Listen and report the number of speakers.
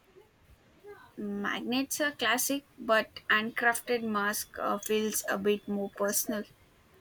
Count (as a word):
one